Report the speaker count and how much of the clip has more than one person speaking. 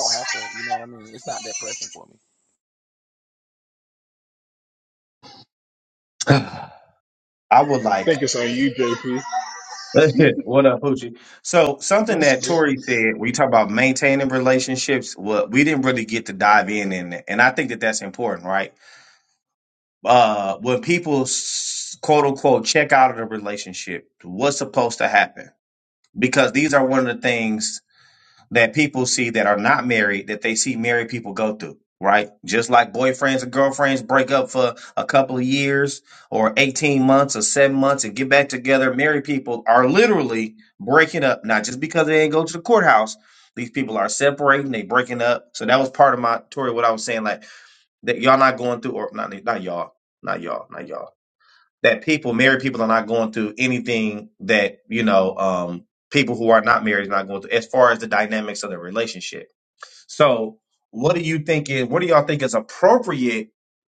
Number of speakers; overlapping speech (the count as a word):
three, about 1%